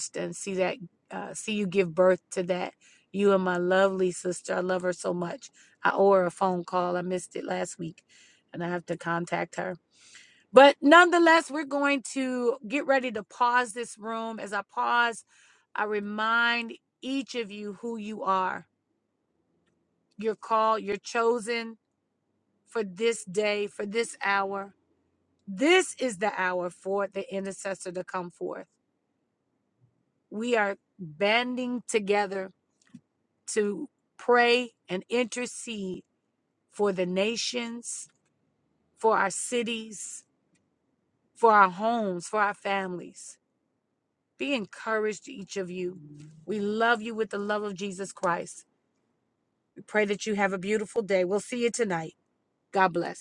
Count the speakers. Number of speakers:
1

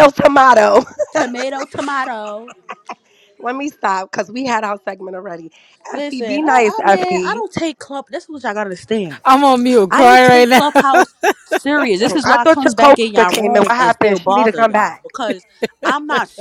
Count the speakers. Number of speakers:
3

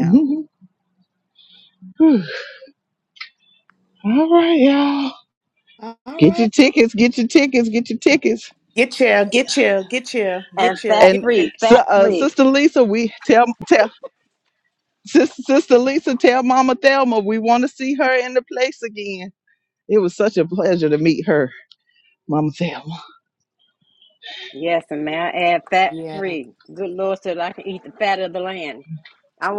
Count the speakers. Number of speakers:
3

